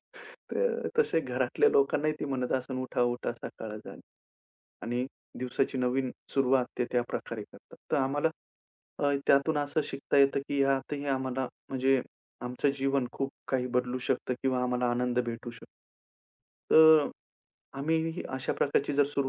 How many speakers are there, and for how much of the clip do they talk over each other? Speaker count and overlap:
one, no overlap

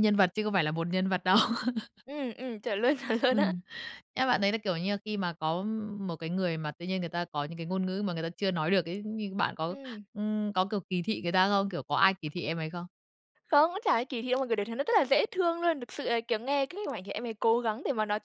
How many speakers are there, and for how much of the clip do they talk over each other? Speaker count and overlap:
two, about 2%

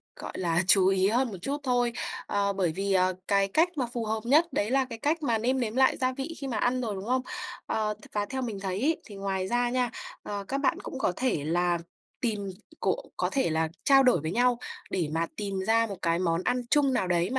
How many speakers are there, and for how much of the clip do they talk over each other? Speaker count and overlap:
one, no overlap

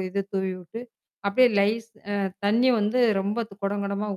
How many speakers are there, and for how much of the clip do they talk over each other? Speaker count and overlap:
one, no overlap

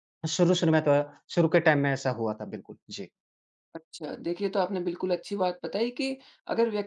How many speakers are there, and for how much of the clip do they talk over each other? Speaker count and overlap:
two, no overlap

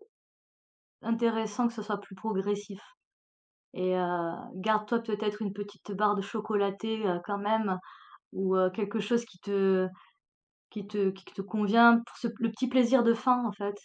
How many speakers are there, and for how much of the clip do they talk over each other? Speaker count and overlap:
one, no overlap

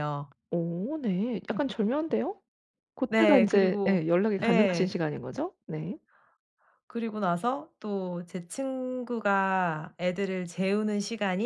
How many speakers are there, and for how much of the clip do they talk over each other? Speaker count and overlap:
two, about 12%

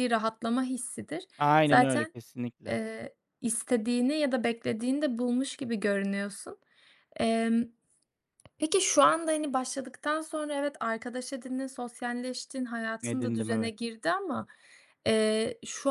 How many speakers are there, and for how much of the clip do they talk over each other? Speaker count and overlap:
two, about 7%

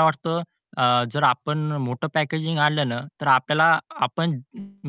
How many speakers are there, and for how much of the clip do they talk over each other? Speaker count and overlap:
one, no overlap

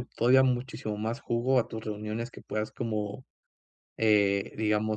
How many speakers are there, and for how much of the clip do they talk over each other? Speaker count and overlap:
one, no overlap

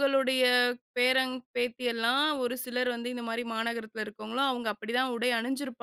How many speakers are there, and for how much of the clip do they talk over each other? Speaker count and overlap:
one, no overlap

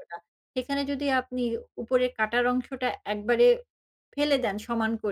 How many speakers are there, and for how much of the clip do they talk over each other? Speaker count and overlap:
one, no overlap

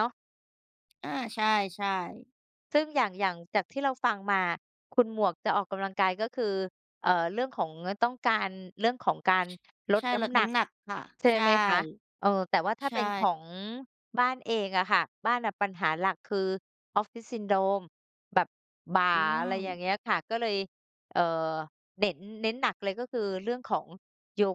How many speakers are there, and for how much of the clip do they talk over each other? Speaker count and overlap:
two, about 6%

